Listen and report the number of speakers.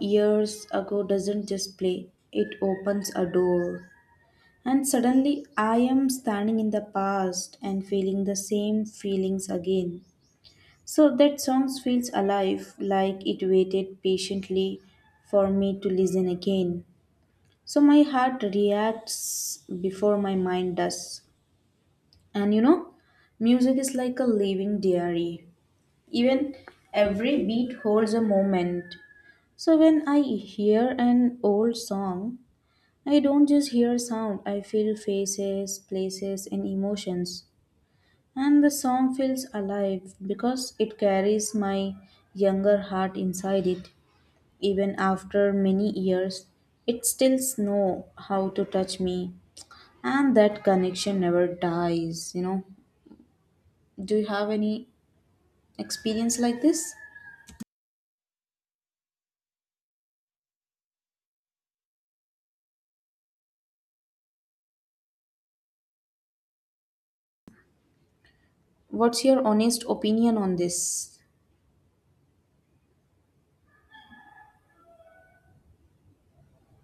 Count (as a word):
one